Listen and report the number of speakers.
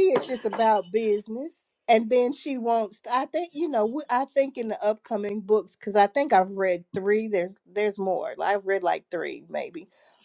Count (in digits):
1